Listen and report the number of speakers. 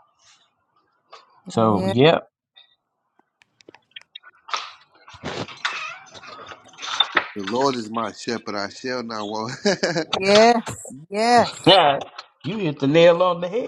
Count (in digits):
3